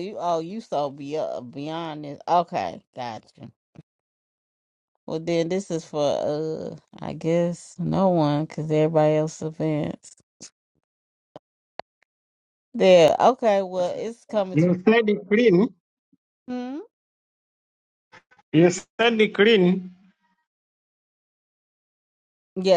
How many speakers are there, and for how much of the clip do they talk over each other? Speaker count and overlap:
2, about 1%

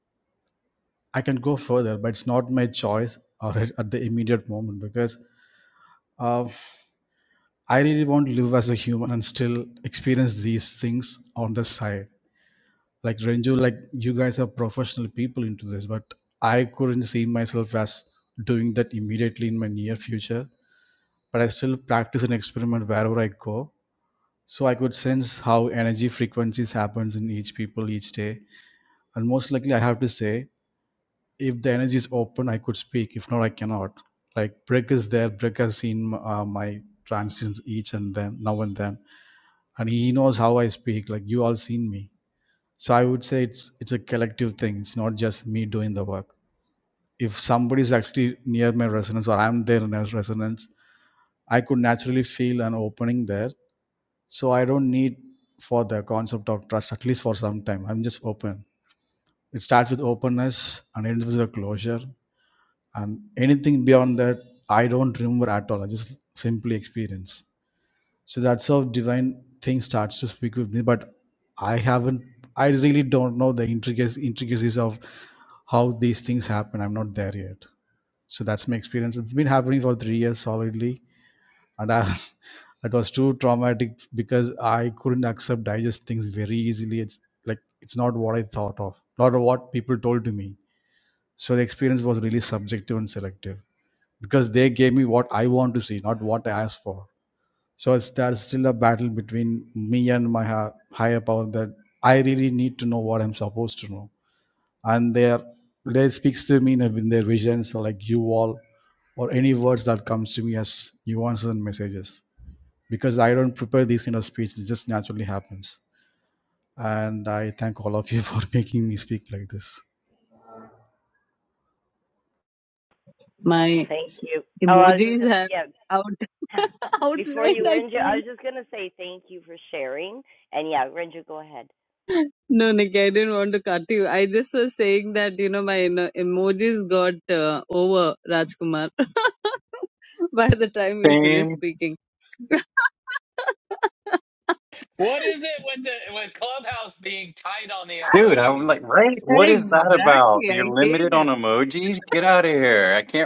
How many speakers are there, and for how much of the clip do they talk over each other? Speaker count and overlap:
5, about 3%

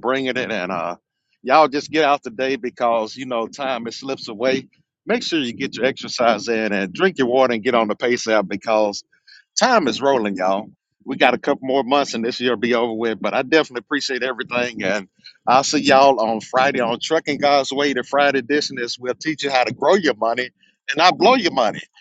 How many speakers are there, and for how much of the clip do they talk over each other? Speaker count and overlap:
1, no overlap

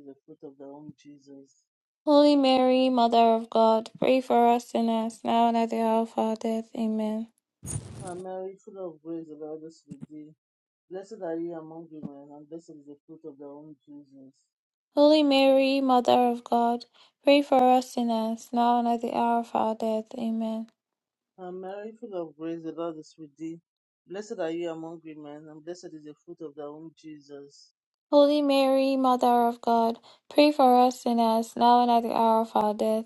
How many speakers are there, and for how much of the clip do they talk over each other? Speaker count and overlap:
2, no overlap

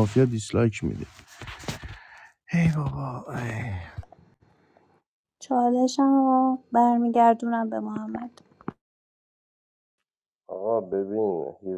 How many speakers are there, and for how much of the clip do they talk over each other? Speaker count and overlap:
3, no overlap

